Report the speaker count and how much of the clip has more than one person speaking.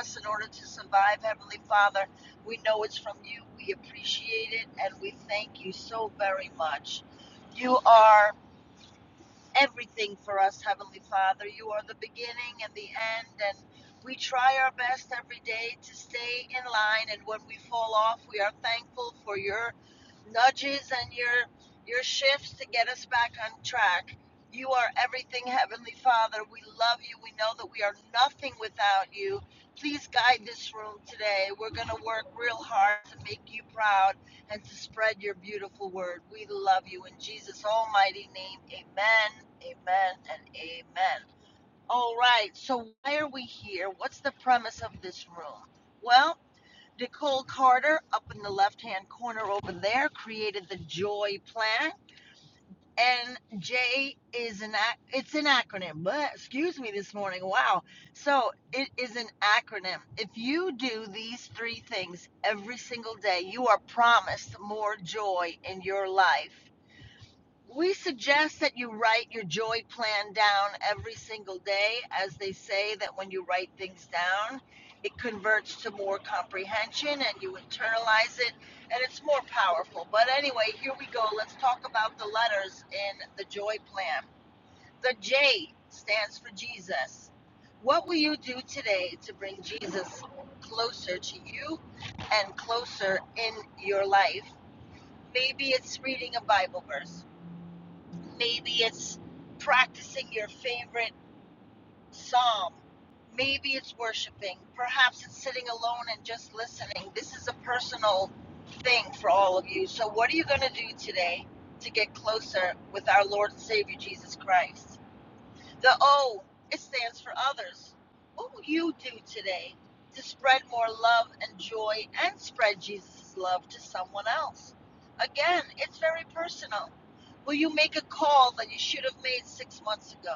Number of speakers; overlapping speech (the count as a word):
one, no overlap